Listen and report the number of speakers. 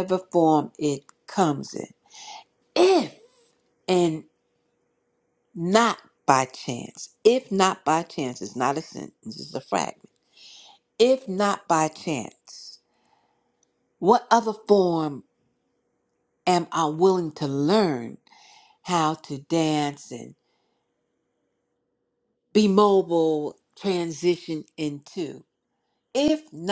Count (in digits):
1